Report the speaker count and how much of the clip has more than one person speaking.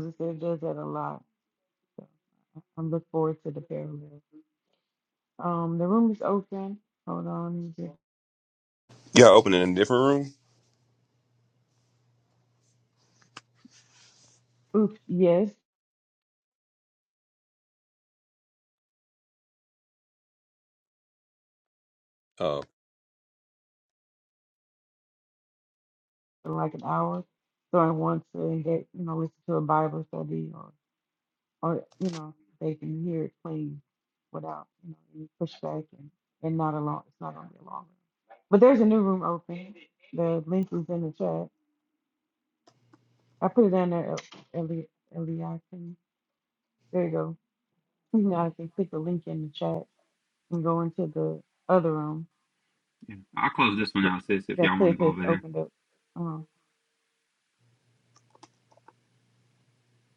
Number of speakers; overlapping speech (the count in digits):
3, about 1%